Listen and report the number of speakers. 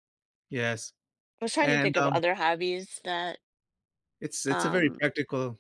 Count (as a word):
two